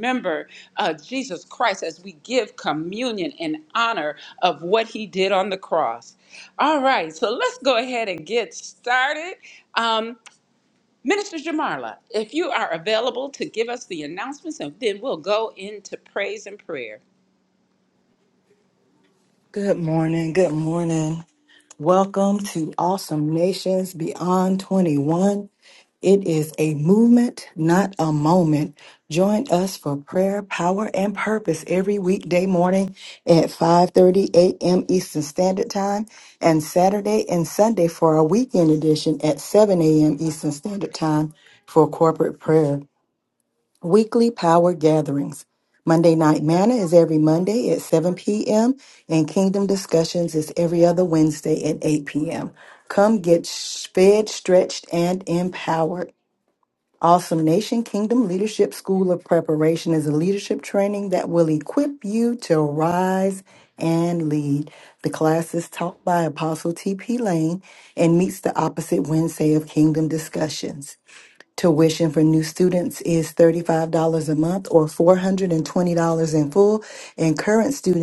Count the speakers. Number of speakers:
two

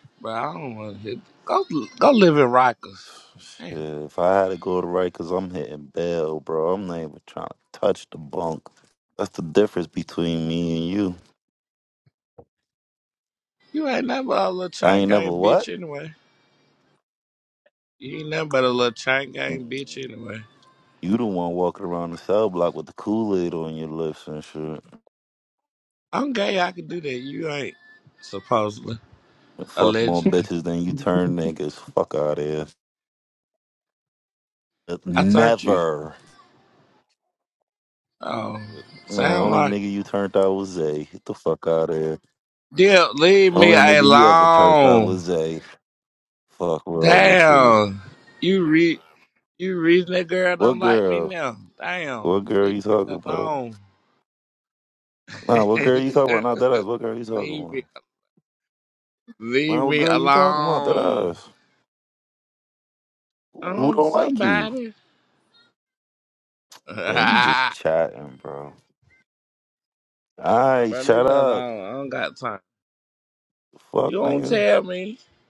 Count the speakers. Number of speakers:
two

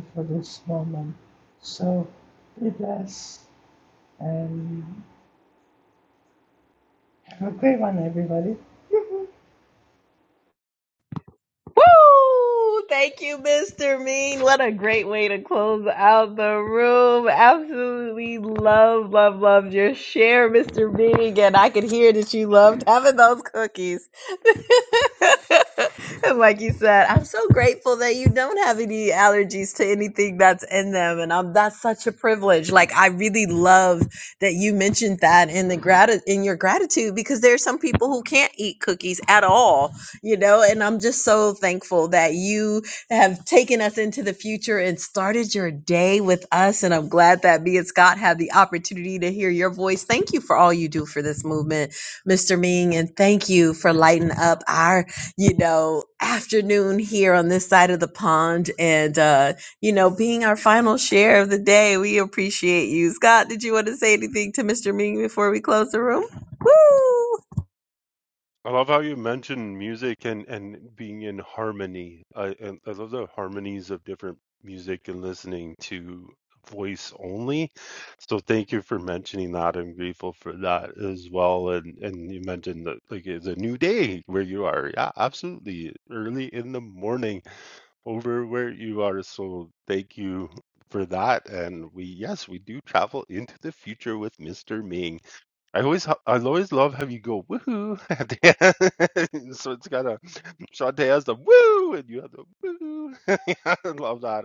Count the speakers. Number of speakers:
three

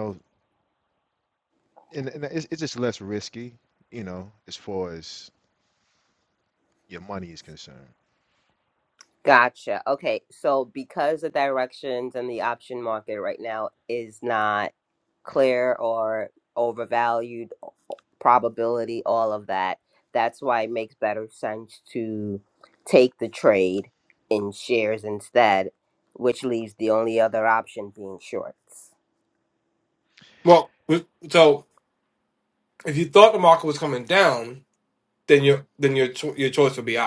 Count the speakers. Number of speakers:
three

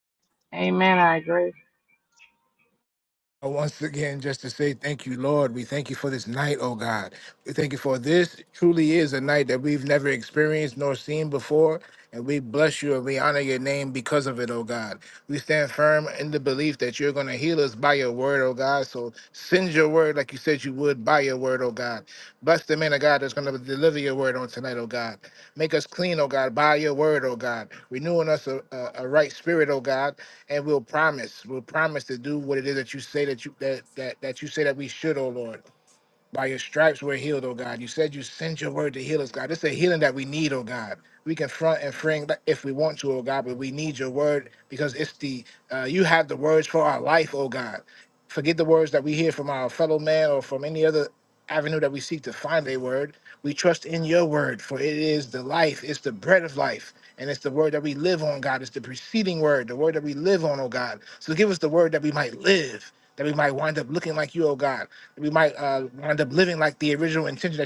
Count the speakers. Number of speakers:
two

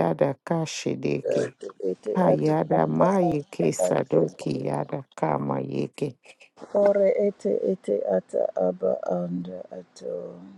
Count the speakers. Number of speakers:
two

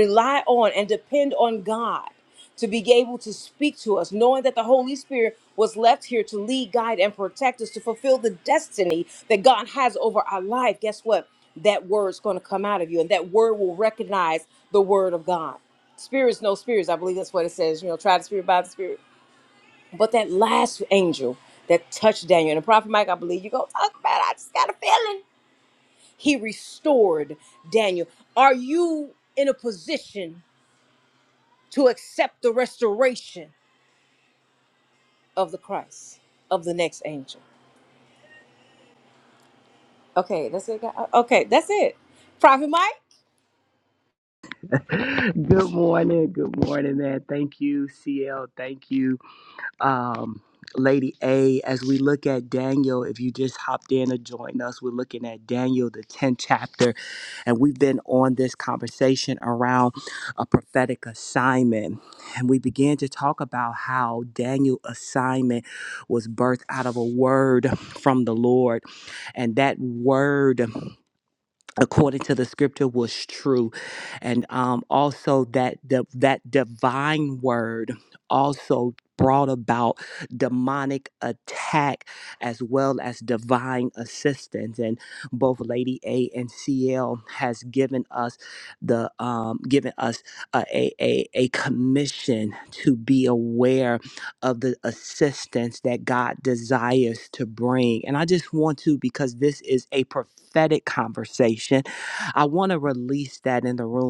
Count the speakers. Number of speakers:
two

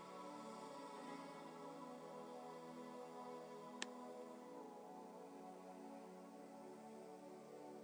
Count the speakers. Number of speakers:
zero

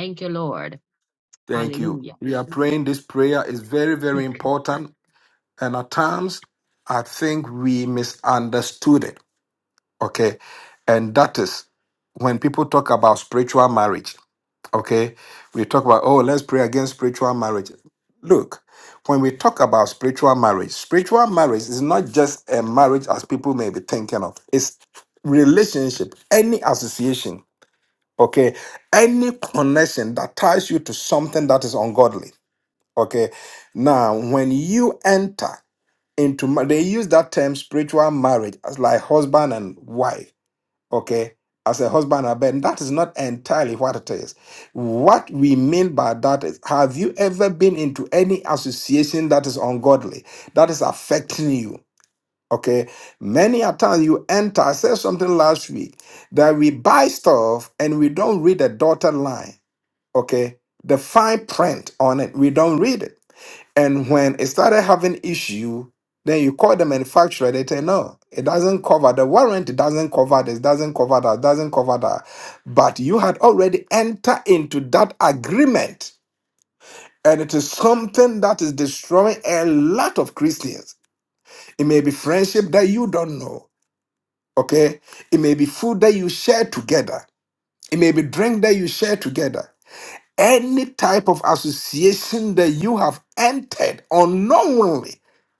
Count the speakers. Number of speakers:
two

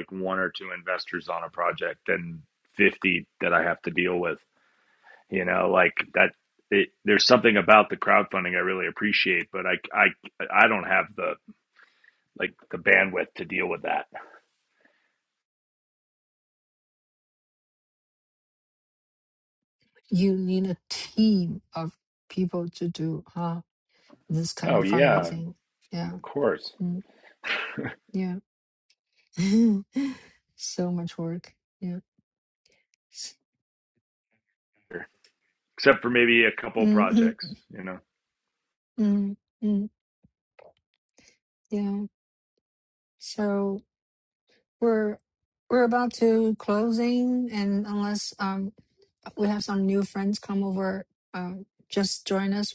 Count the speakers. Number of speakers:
two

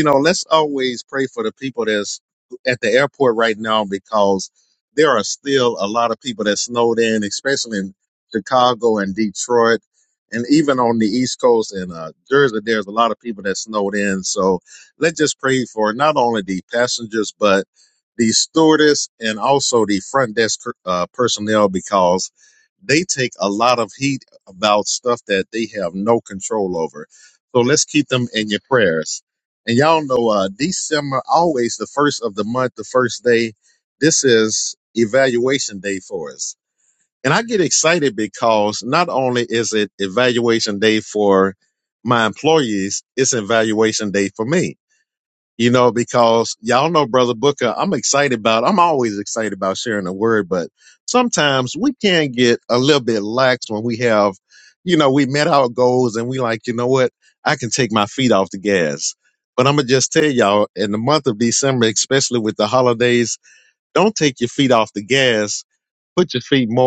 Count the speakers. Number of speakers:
one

